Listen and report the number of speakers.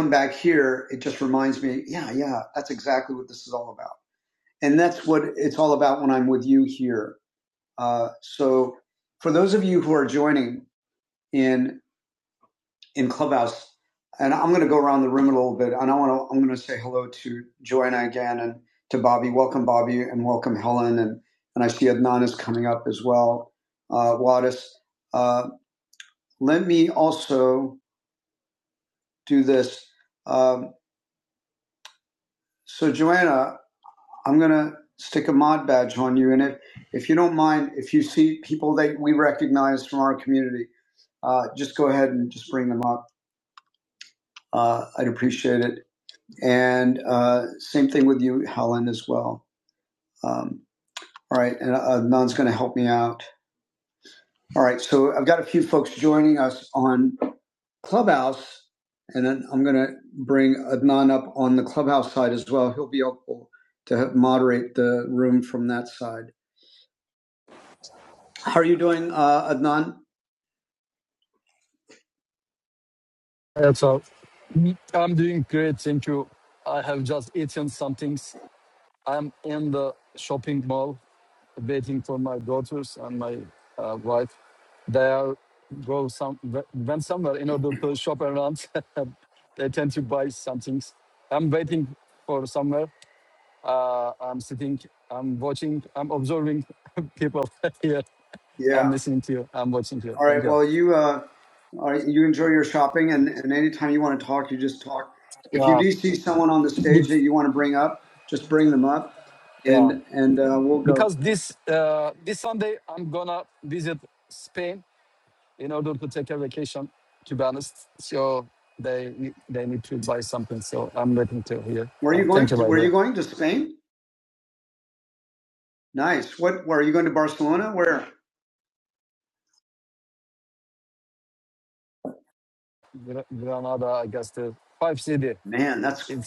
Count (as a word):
two